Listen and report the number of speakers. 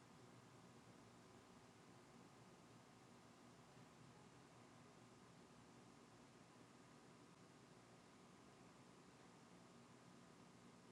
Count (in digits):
0